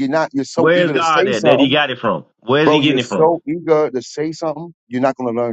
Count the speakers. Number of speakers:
2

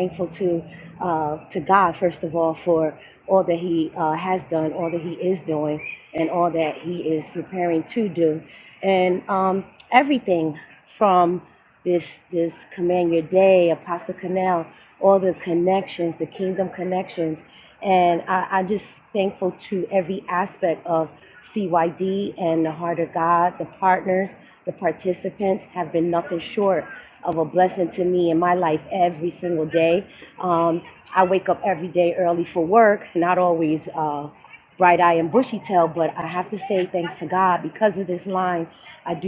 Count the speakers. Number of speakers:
1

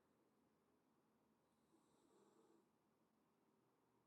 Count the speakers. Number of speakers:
0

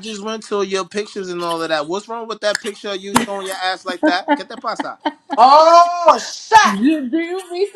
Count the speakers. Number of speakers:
3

